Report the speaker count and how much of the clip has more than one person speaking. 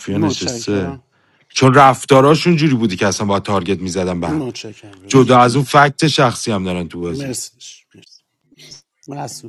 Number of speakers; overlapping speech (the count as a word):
two, about 15%